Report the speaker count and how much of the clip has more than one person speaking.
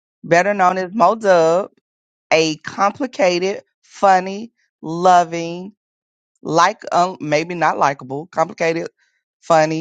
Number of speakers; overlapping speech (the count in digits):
1, no overlap